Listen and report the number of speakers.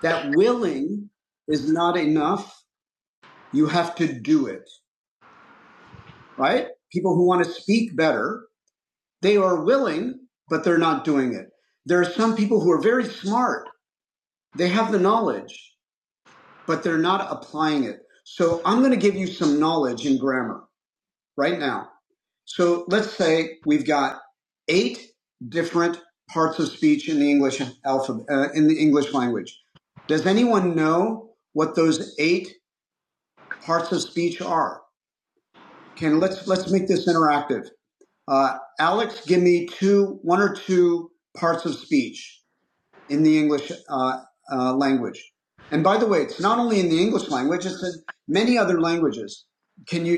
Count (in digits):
1